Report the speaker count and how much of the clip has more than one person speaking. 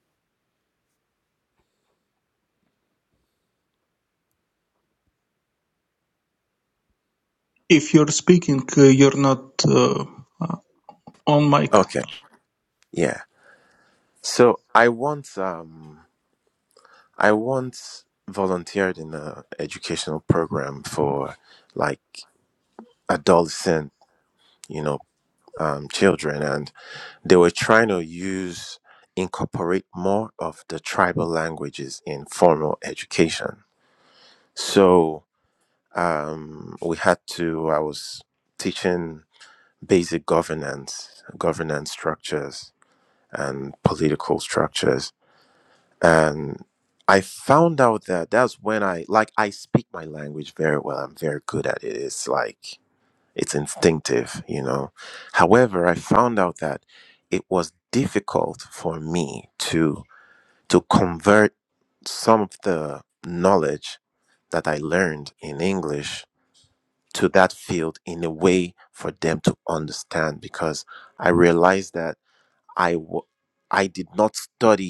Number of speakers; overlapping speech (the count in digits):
2, under 1%